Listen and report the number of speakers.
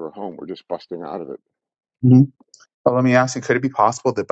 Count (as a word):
two